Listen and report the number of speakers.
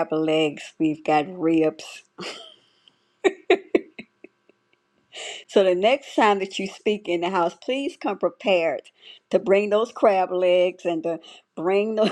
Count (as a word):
one